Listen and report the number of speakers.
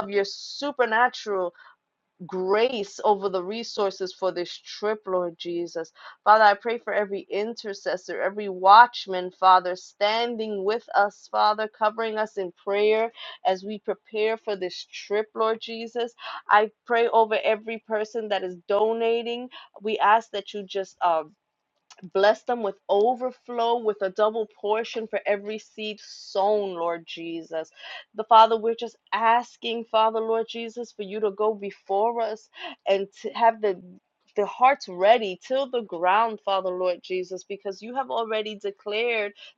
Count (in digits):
1